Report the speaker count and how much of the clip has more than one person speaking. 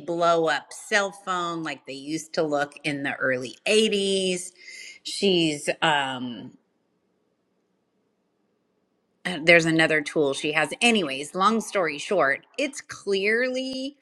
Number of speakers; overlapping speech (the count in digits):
1, no overlap